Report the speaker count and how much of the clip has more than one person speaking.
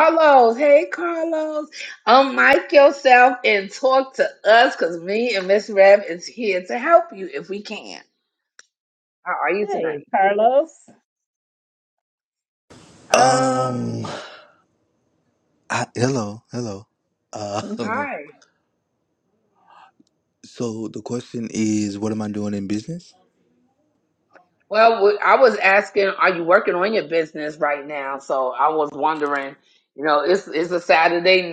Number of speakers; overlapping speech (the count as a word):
three, about 4%